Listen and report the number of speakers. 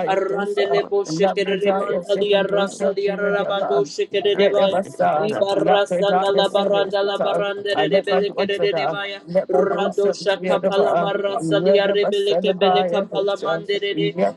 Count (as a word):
two